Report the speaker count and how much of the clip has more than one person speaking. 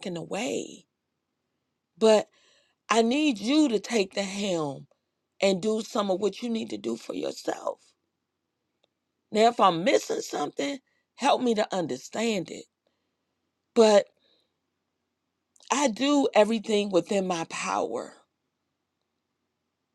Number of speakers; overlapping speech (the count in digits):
1, no overlap